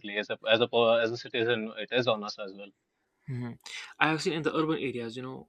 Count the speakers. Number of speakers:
two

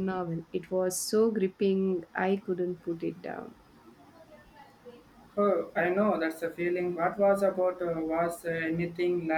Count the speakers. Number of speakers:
two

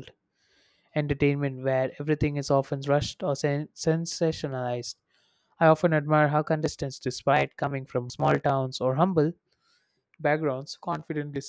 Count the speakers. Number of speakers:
one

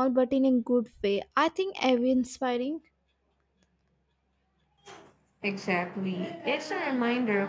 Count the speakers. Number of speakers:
two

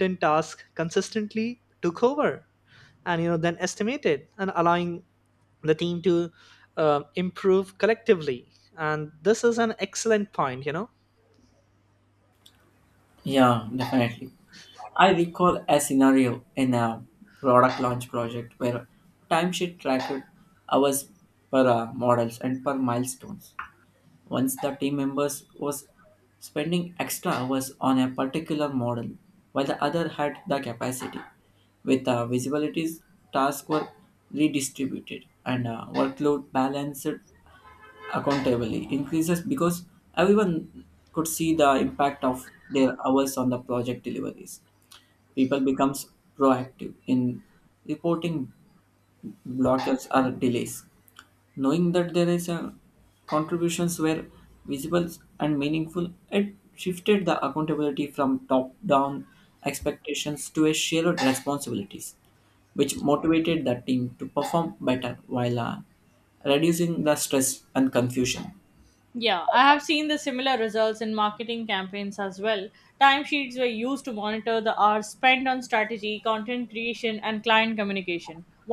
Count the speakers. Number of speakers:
three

